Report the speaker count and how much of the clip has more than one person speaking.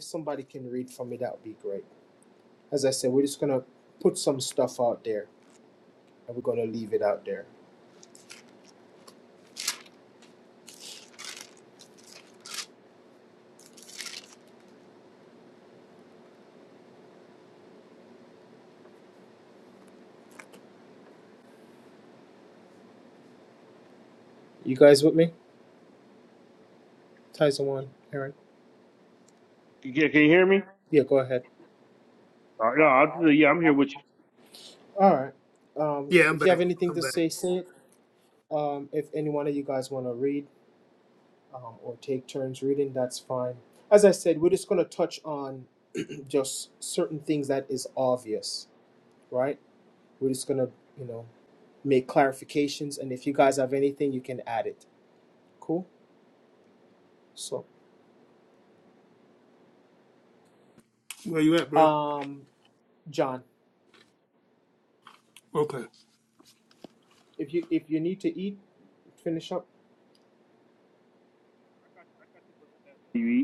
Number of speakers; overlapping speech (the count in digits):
3, about 2%